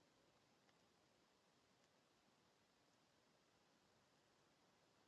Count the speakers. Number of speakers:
0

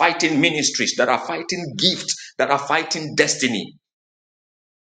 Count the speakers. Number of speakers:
1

